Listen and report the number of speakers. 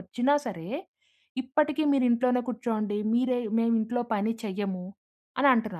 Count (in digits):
1